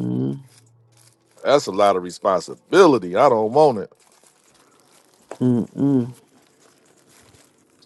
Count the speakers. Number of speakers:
two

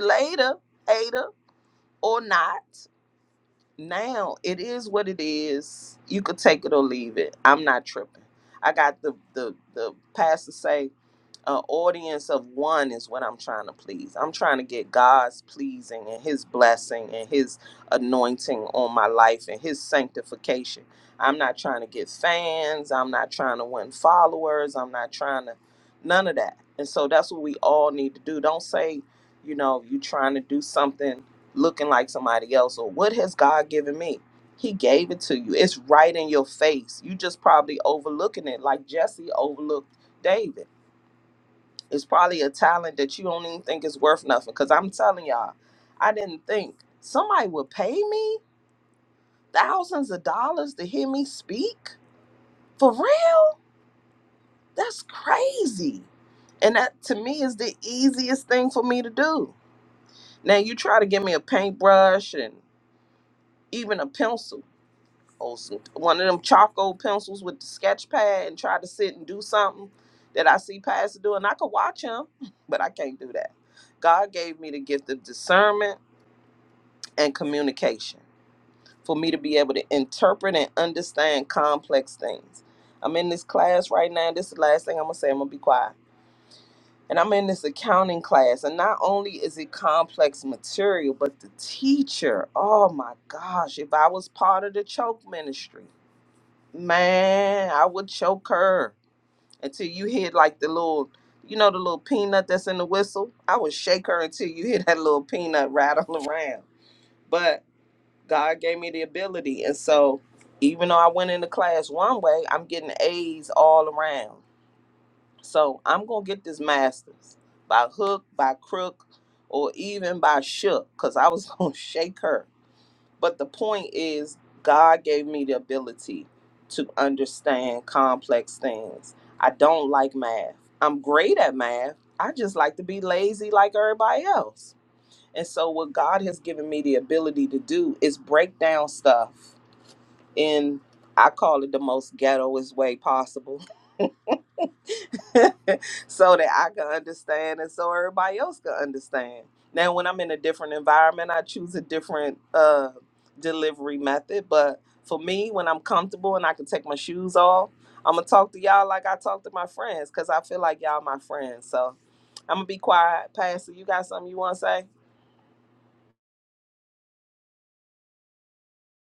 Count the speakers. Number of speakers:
one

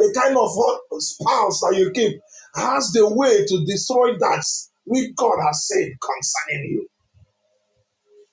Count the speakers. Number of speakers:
one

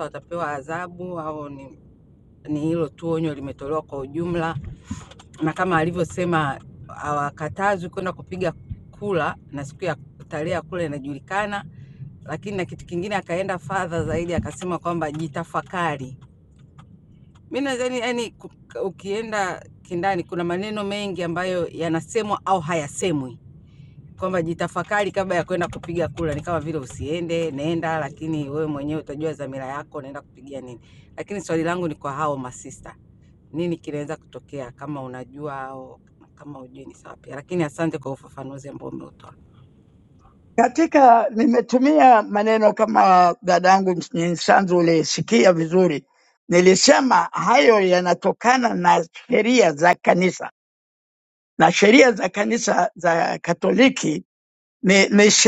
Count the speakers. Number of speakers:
two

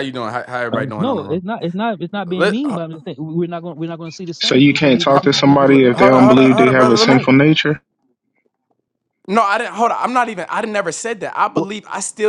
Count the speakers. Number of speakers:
three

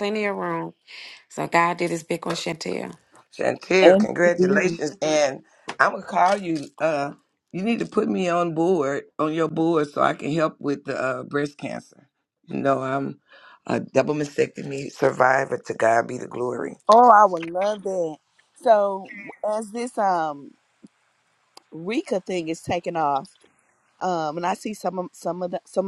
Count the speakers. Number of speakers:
three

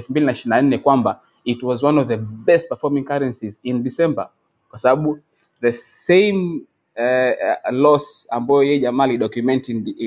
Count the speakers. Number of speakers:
one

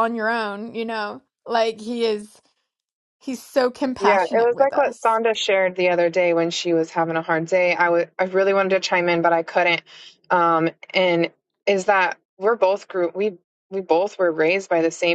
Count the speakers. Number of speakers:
two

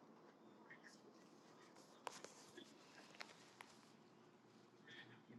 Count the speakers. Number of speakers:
zero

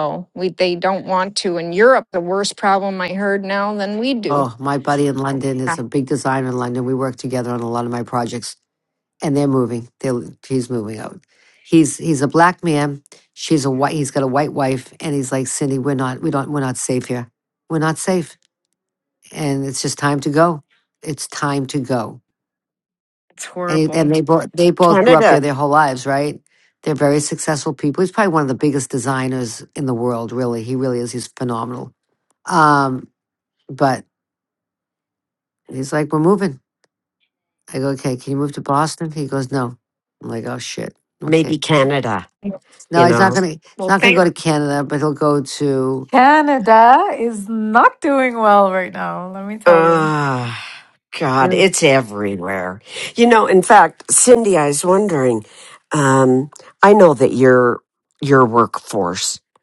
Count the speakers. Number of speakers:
four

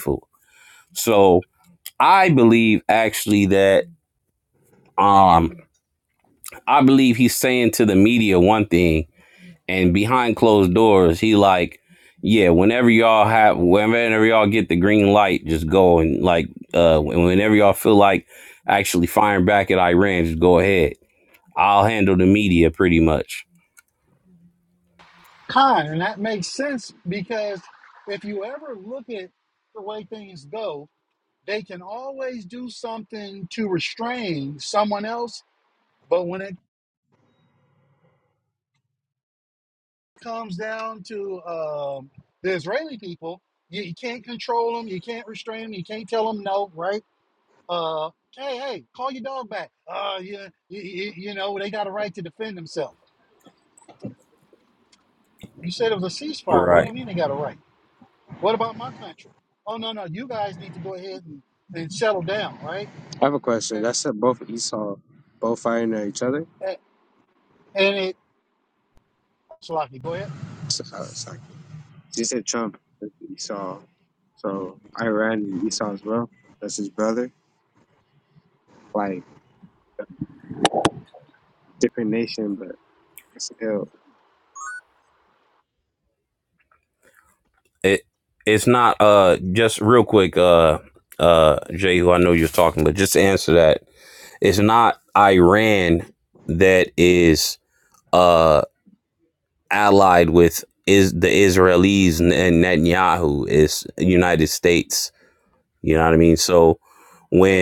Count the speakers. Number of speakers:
three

